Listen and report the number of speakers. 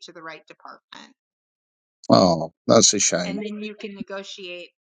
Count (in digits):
2